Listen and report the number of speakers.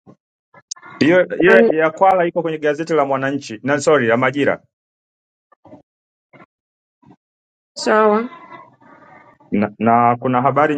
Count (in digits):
2